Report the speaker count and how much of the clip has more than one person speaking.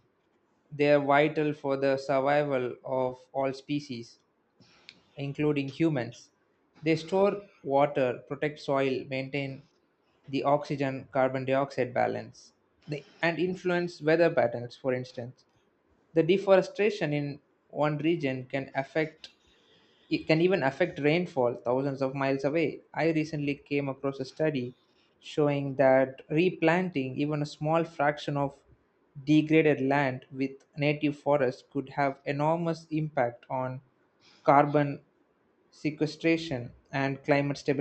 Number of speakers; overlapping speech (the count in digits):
1, no overlap